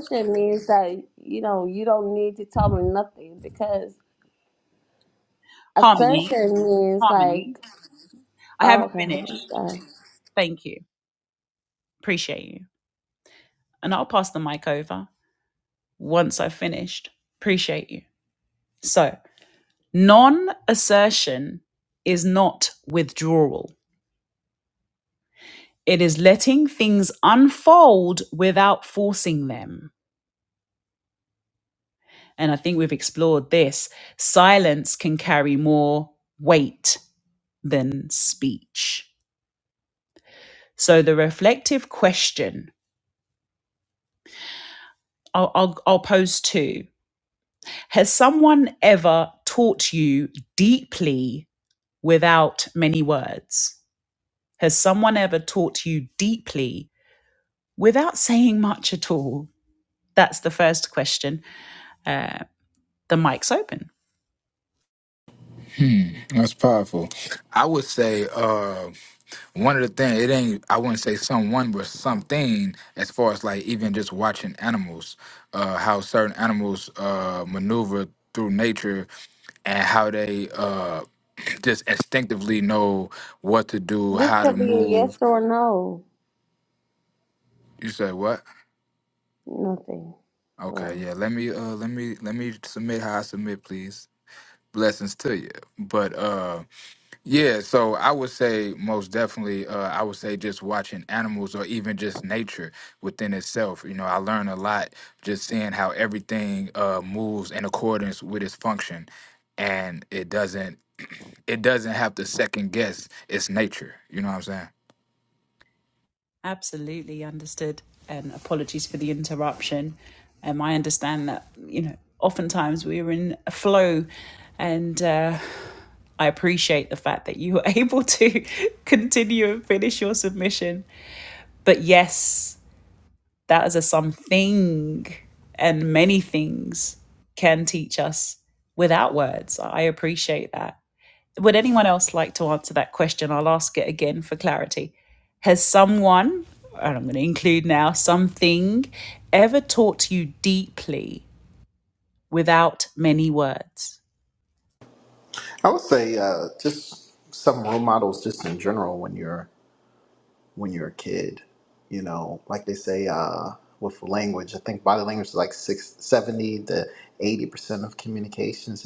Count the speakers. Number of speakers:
four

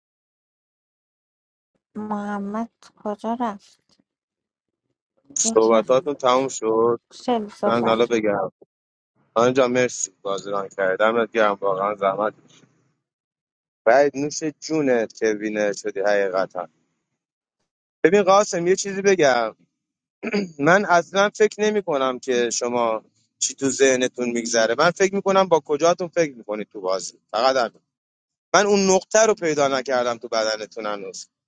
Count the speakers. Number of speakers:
two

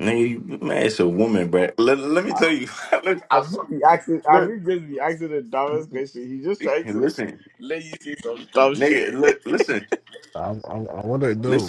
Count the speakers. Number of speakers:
three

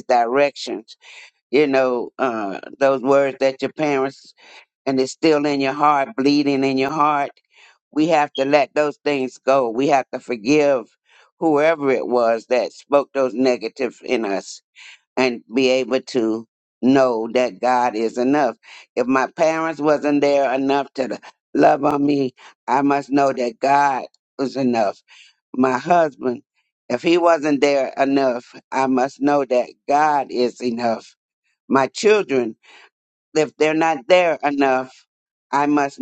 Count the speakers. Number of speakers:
one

